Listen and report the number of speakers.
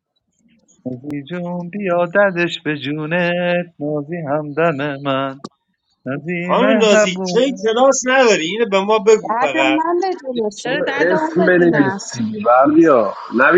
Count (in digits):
4